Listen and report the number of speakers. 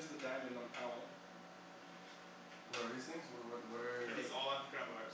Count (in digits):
3